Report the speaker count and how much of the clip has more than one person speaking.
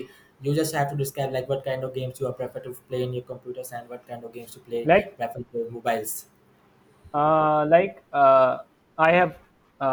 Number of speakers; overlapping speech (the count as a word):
two, about 3%